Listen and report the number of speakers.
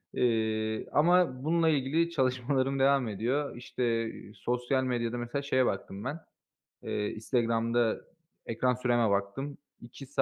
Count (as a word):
one